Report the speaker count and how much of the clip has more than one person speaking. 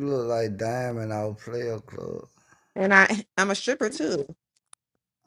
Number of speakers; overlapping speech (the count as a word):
two, no overlap